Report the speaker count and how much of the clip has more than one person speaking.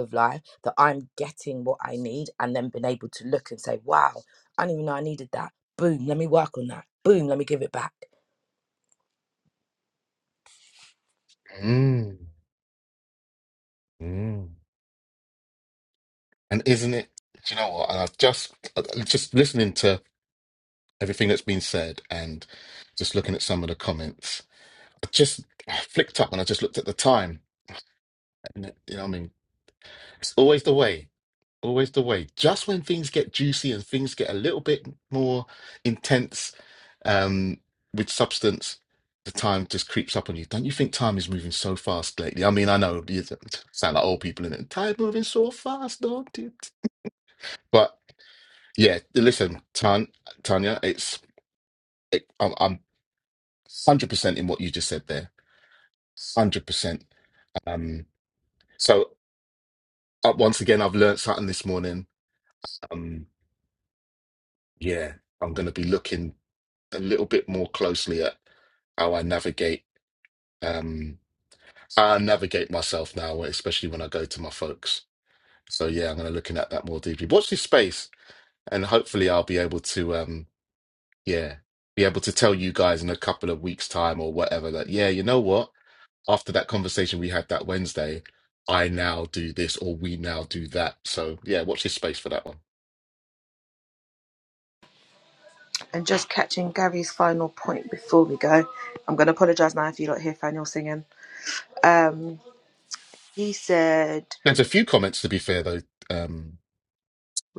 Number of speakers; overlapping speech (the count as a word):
three, no overlap